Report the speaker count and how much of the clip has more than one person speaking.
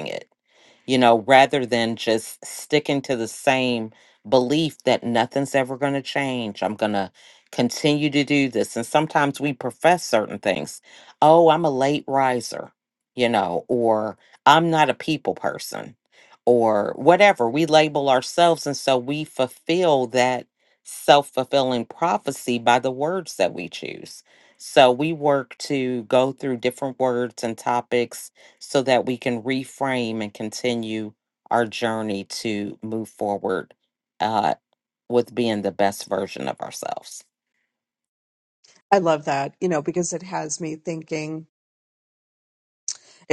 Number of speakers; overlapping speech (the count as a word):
two, no overlap